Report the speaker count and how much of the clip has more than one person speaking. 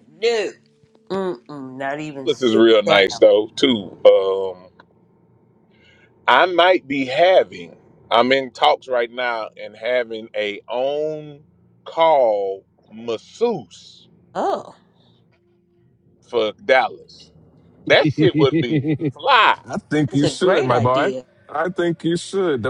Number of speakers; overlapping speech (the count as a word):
three, about 8%